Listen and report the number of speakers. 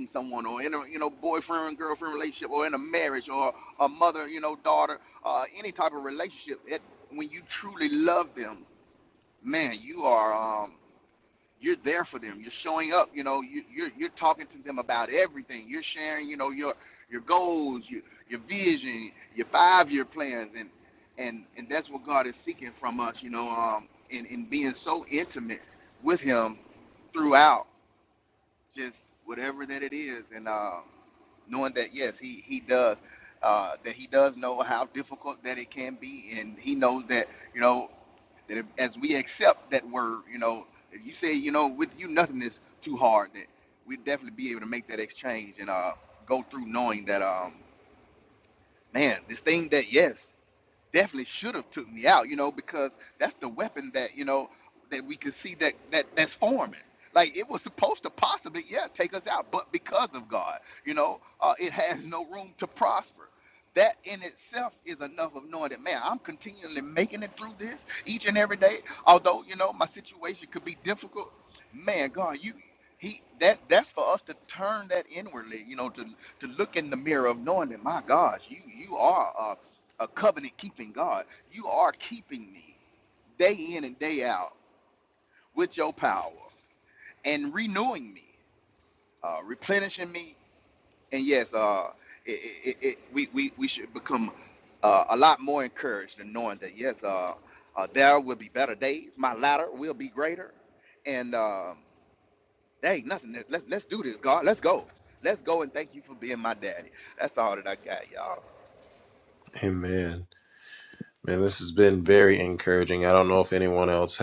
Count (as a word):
two